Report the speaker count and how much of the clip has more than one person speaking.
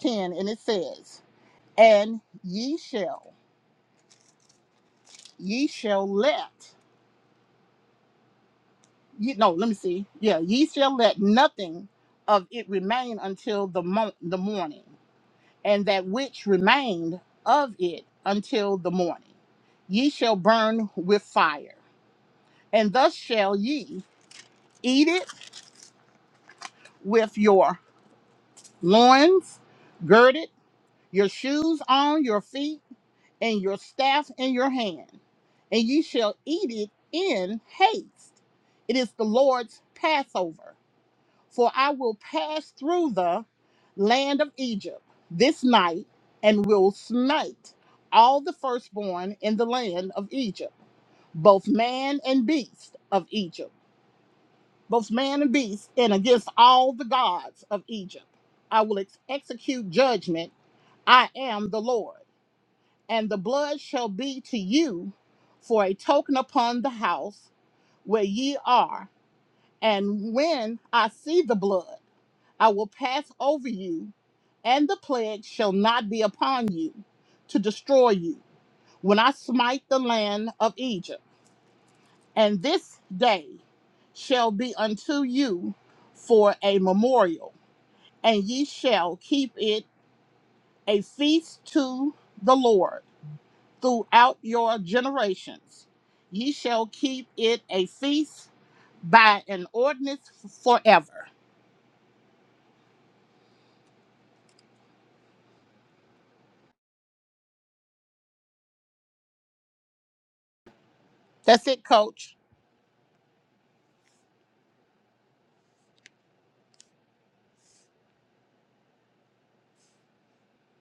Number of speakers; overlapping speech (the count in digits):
1, no overlap